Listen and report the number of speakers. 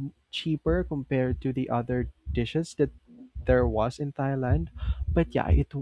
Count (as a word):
one